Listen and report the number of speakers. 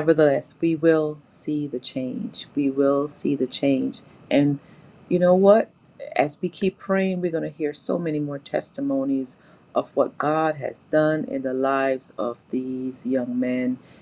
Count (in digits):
1